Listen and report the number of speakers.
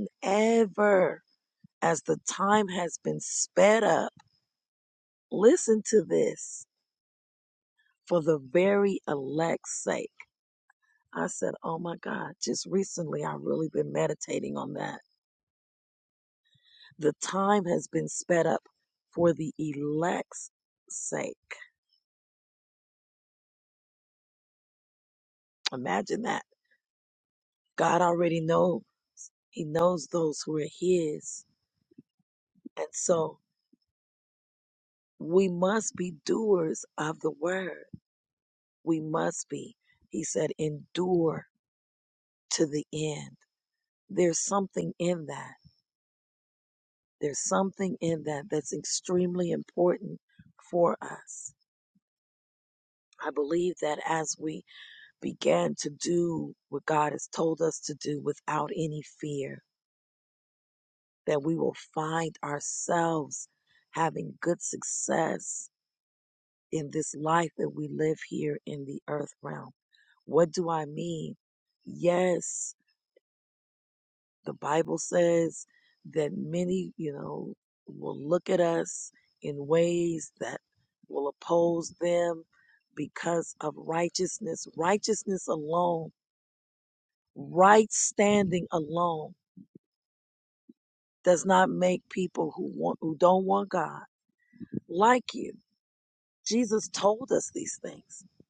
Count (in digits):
1